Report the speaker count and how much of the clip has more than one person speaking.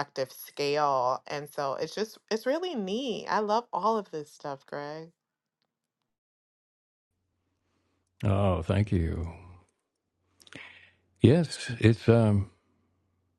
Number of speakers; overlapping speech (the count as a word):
two, no overlap